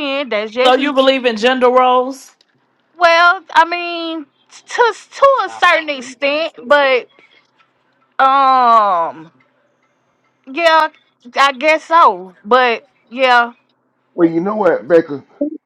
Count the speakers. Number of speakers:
3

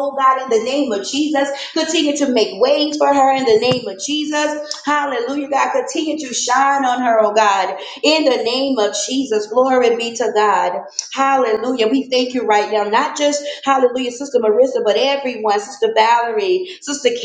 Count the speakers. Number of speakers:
1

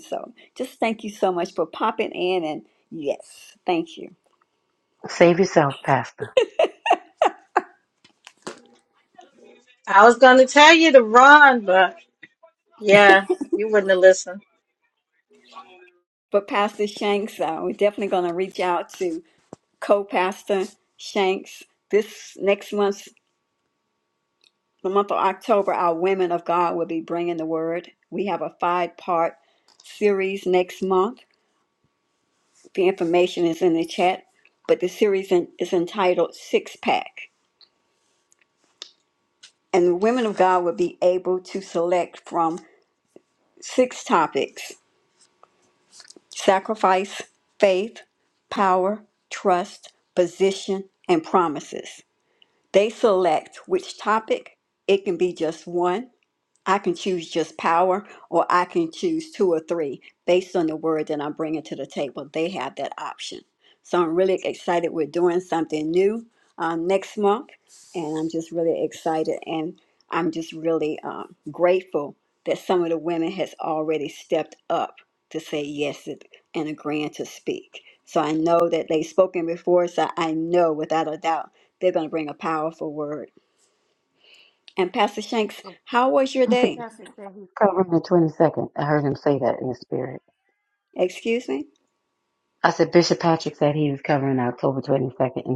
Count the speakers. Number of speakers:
3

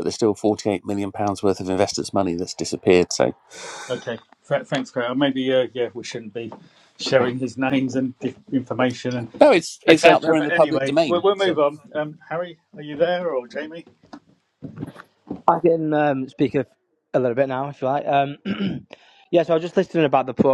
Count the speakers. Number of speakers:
3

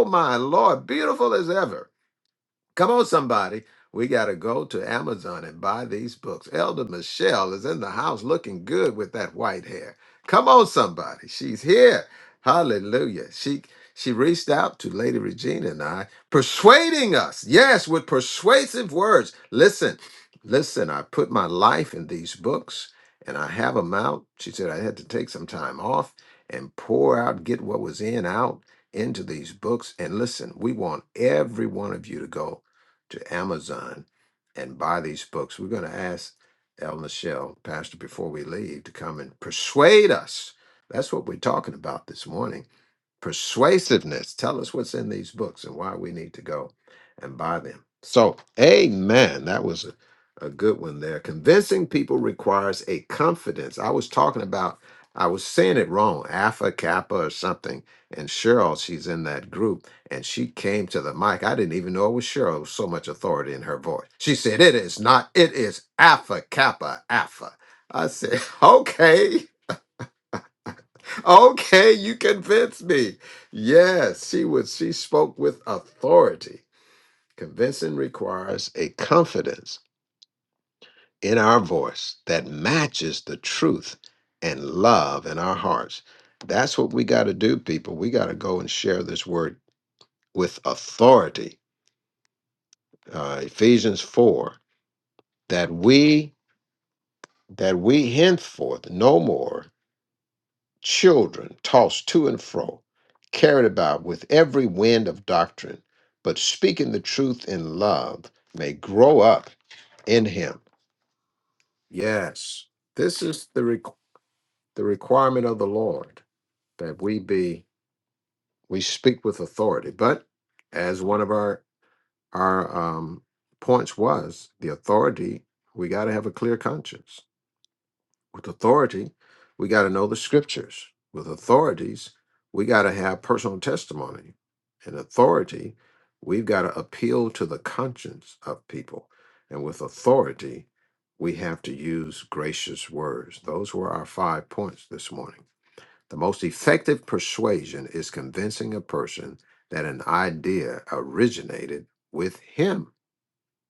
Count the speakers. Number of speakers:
1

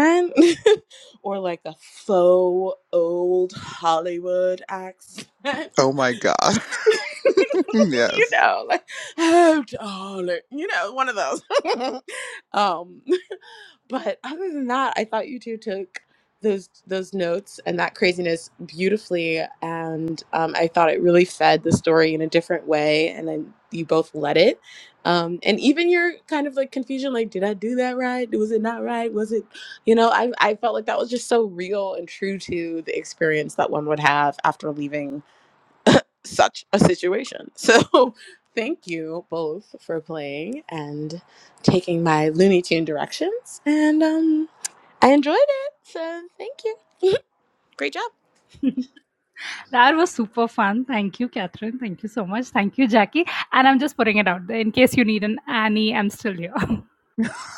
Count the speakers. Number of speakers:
3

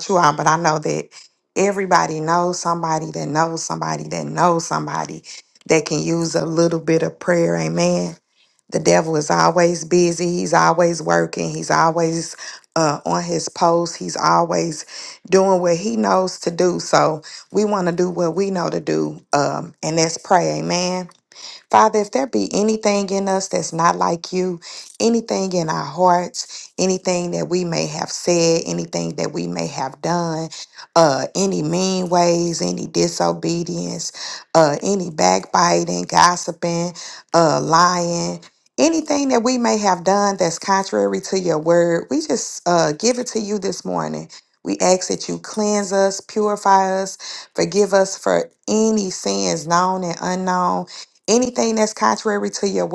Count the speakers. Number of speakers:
1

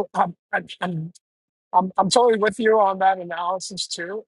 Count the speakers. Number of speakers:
1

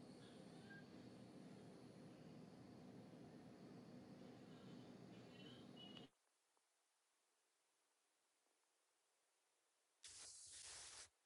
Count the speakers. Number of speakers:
0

